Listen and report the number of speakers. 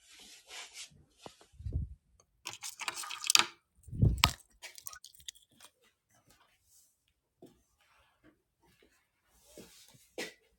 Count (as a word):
zero